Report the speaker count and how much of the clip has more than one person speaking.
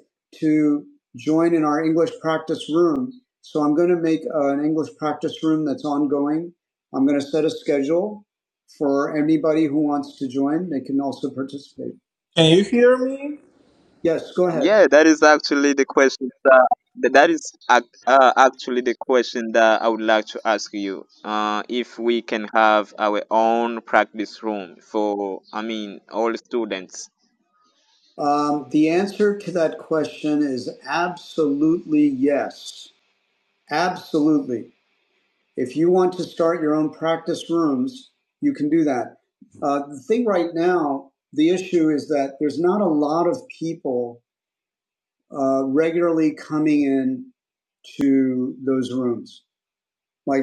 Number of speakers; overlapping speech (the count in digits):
3, under 1%